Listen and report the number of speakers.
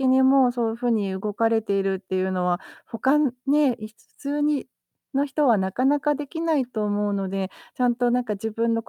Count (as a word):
one